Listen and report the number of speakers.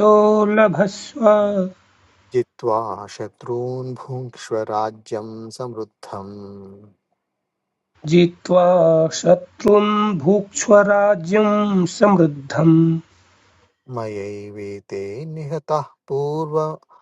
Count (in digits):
2